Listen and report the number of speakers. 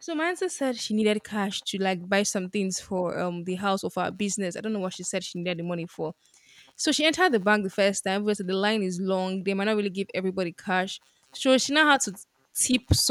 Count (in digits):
1